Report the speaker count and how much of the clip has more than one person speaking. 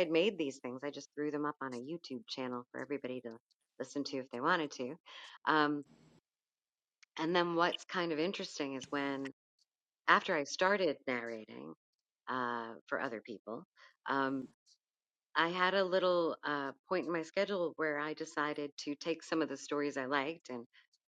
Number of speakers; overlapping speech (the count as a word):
one, no overlap